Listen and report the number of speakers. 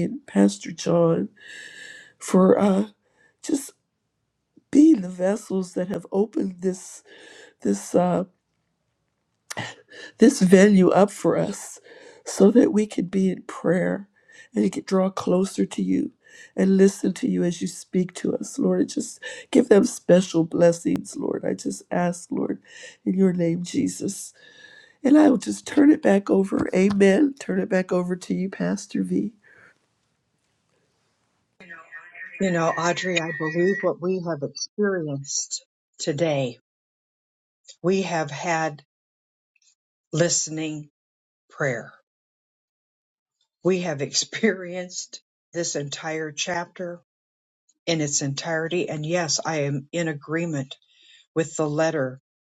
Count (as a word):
three